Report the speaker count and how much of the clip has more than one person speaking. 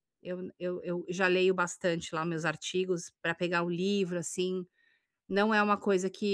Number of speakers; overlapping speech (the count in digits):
1, no overlap